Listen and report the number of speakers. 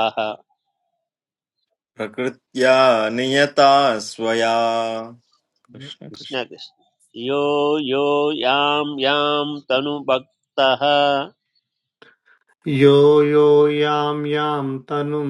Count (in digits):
3